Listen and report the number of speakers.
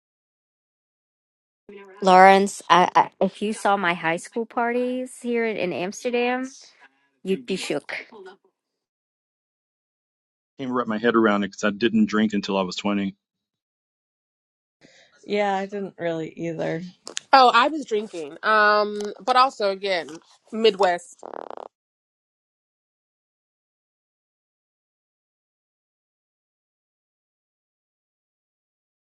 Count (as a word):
four